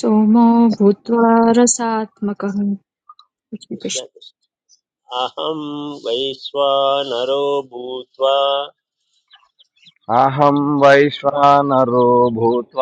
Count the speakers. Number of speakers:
three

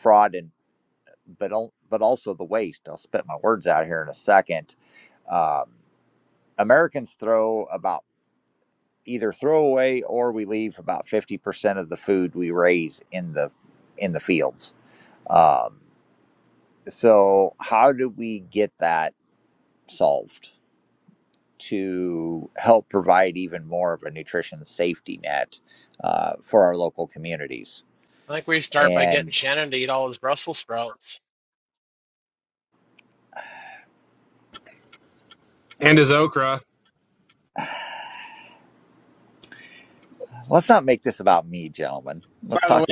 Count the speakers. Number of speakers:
three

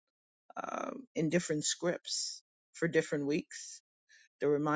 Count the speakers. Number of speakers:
one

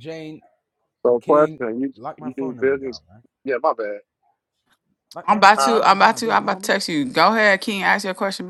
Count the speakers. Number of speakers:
three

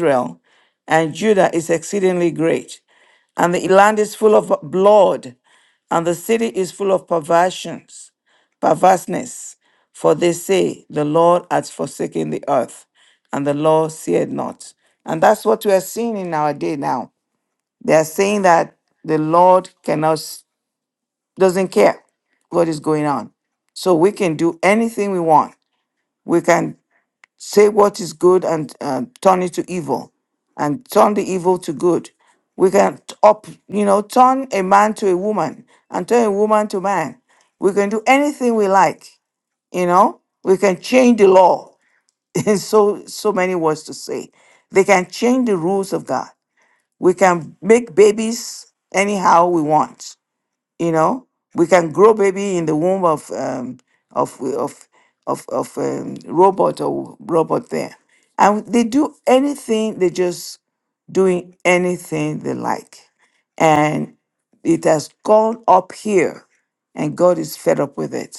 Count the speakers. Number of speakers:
one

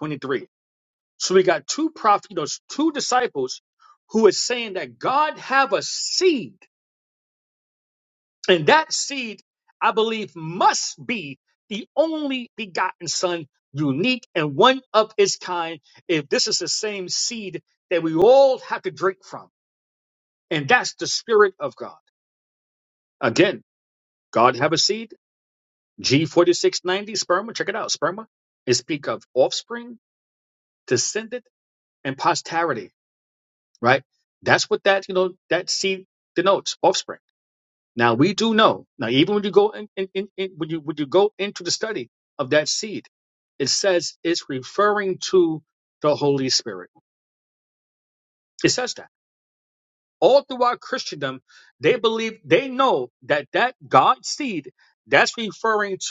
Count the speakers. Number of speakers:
one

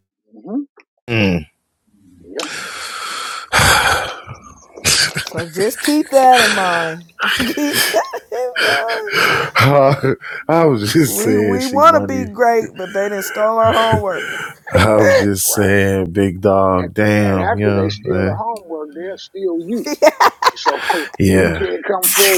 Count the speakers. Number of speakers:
three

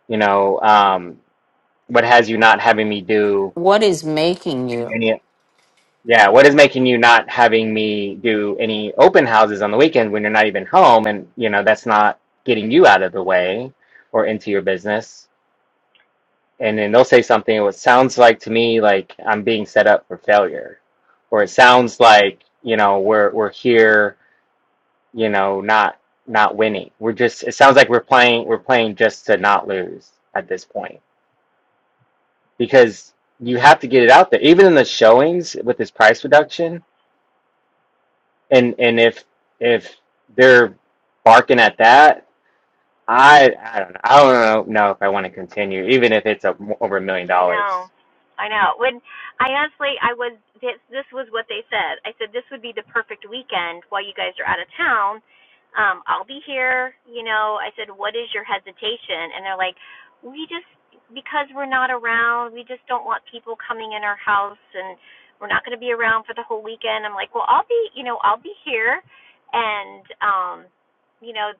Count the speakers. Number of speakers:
three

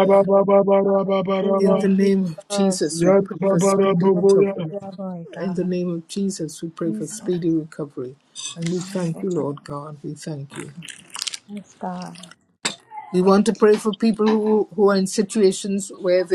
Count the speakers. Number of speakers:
three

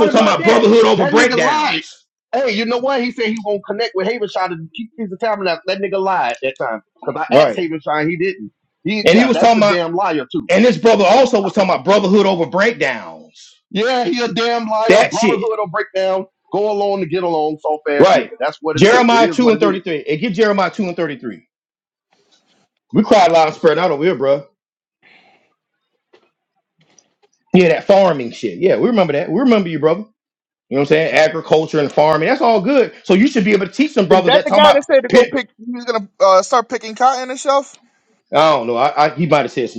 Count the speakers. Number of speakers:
three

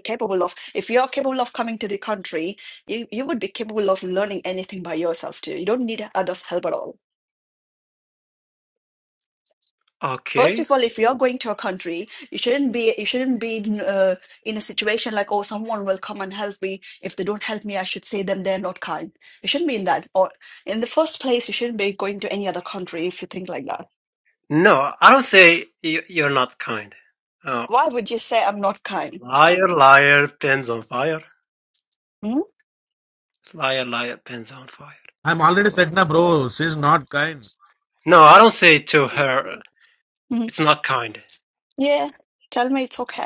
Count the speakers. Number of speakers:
three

